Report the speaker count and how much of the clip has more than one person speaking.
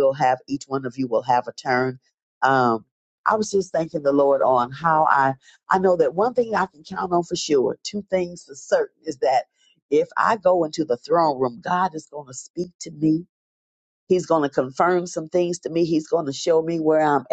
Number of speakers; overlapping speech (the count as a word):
one, no overlap